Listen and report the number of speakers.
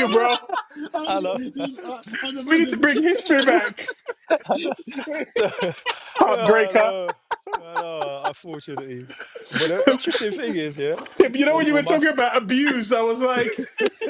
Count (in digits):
3